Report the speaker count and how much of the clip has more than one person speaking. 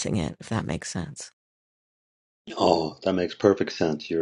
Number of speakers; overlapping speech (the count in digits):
2, no overlap